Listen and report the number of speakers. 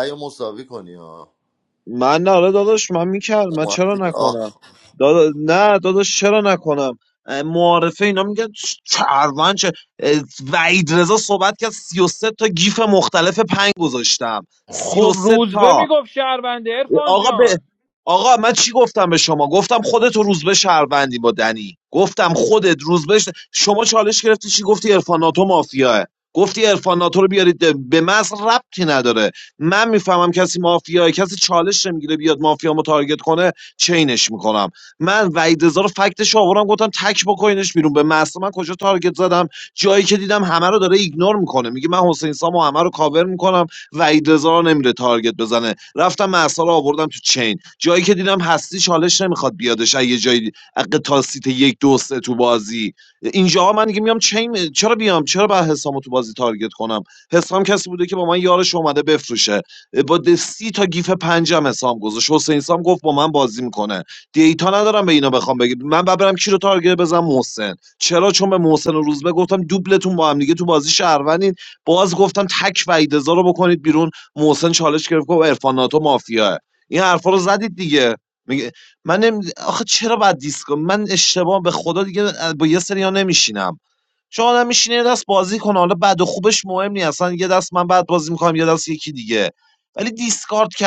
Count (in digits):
3